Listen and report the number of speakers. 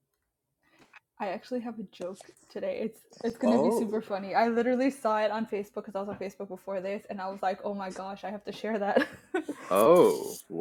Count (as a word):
two